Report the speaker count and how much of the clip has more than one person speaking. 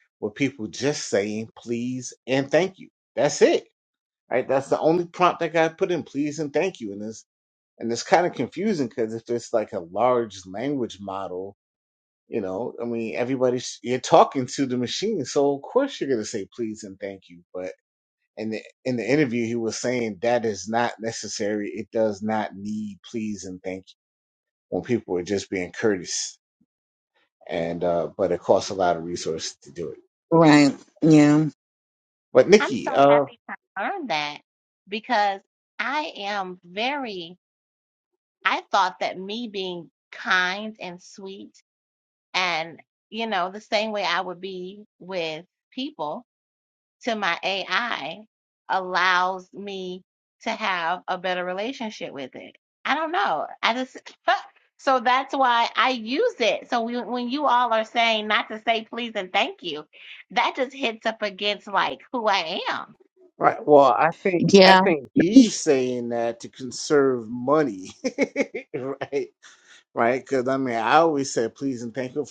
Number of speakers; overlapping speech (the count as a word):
three, about 2%